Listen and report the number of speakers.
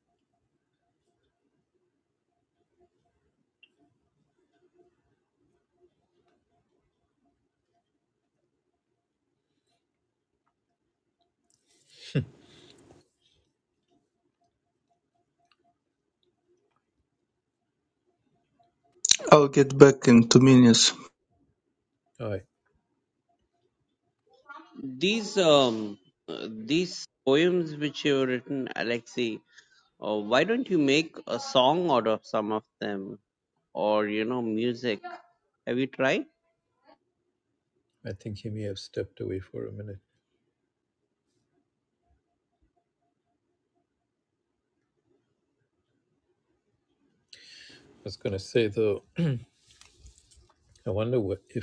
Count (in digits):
3